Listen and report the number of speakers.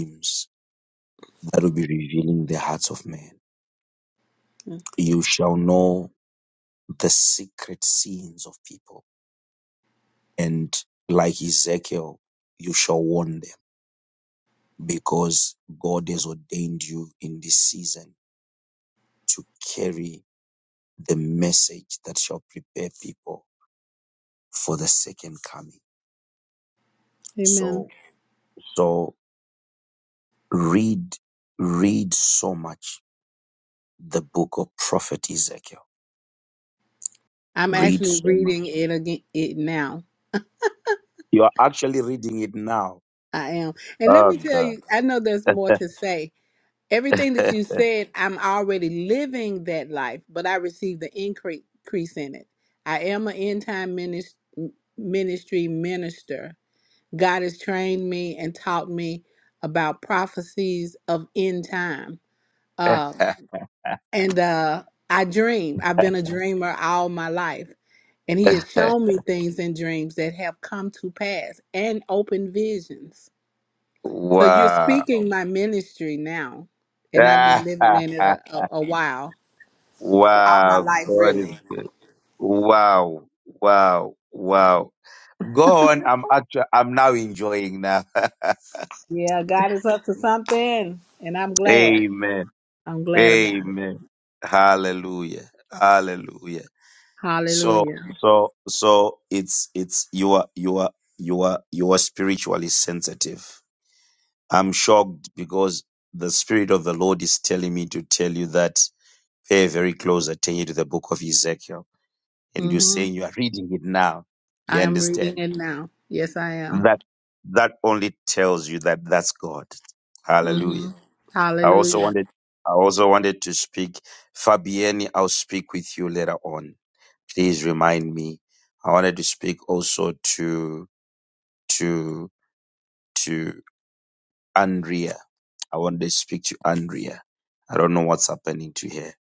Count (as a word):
two